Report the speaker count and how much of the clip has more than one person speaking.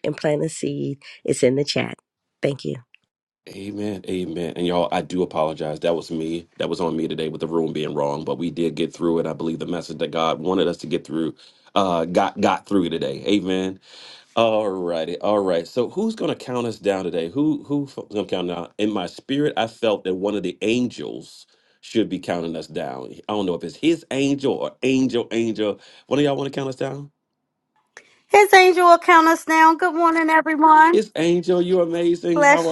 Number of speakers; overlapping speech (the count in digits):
3, about 1%